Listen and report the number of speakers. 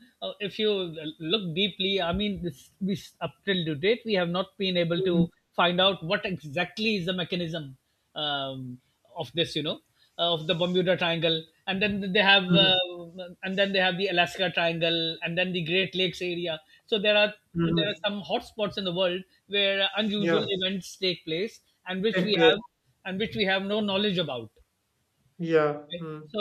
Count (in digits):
2